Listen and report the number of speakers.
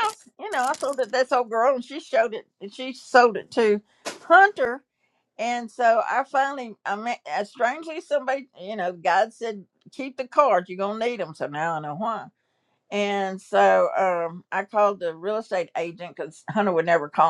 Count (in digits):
1